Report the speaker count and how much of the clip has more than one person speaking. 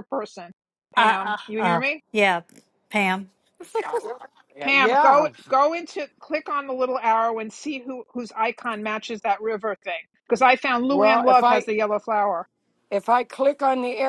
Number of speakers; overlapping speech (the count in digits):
3, about 16%